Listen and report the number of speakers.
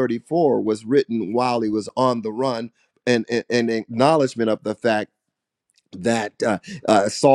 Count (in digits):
1